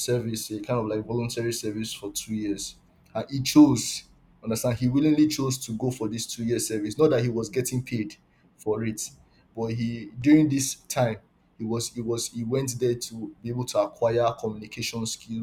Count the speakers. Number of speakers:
1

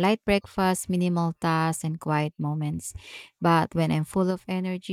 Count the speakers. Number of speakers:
1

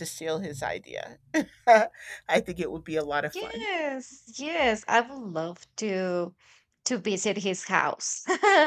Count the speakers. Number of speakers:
2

